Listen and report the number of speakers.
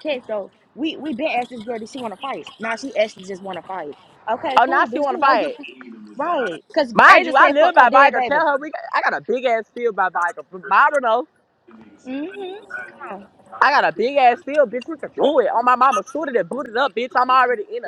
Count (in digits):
2